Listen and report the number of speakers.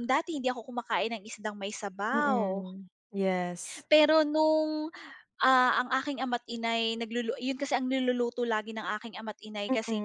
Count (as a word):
two